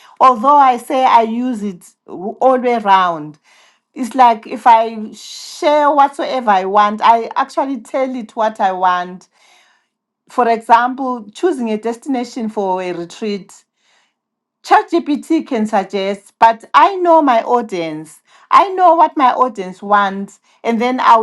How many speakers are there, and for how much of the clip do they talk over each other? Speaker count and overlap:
1, no overlap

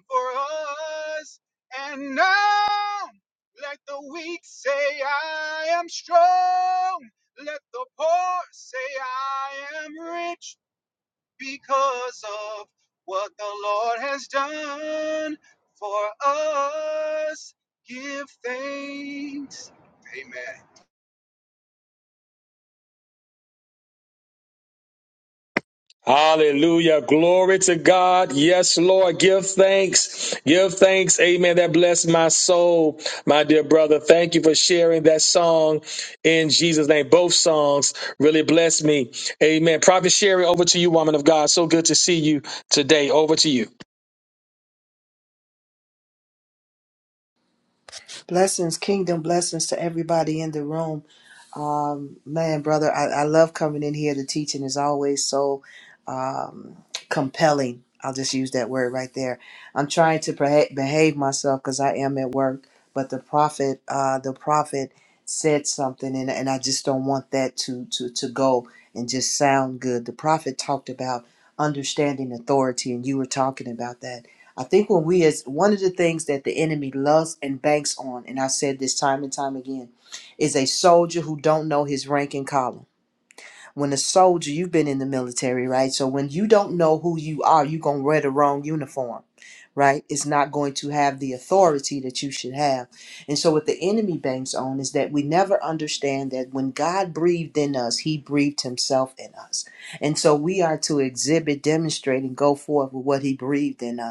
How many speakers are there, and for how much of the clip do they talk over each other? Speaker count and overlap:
3, no overlap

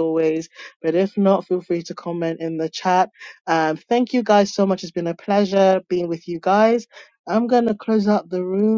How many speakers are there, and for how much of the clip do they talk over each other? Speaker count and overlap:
1, no overlap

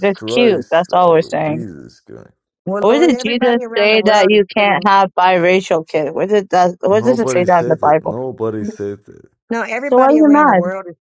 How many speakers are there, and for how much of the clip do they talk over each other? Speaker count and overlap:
3, about 51%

